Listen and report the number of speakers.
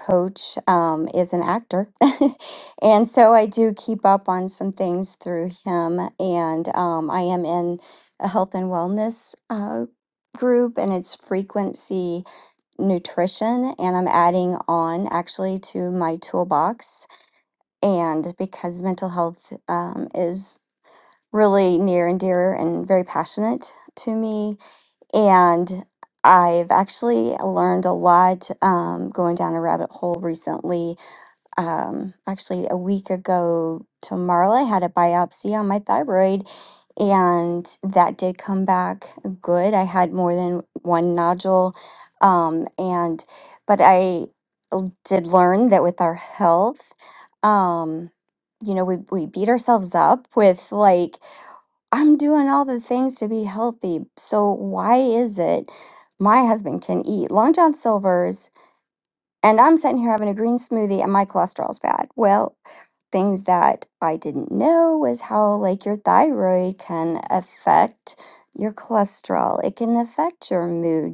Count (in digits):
1